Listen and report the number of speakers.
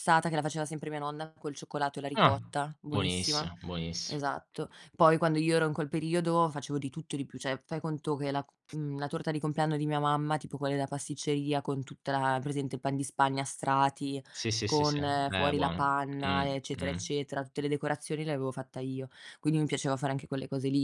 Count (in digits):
2